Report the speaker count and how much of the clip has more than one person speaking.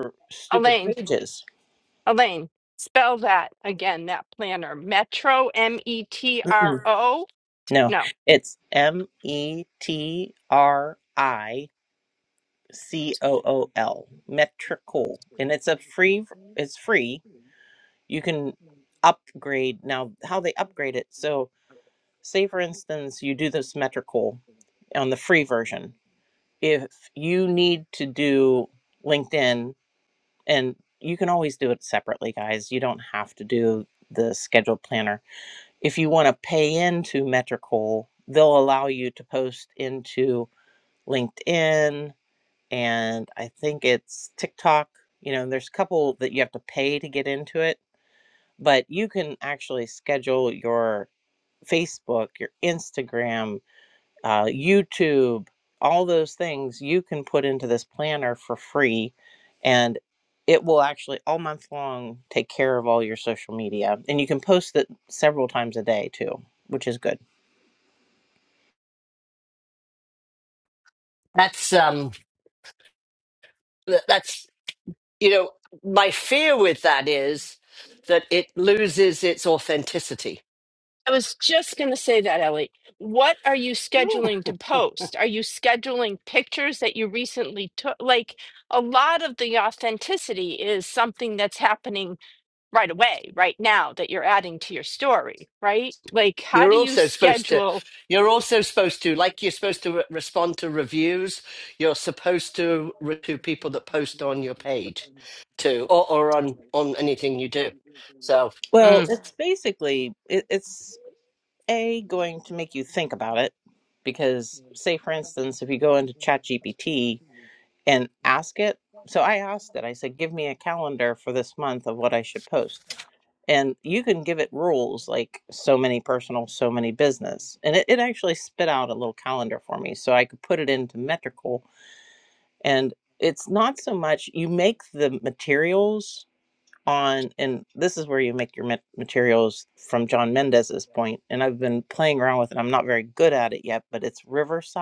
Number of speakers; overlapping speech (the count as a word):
three, about 2%